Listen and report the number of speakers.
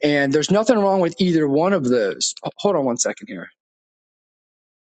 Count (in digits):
1